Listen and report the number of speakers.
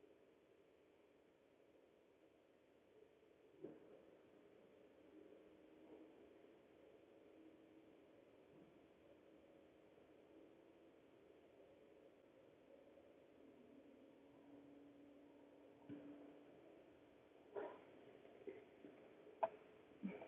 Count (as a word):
zero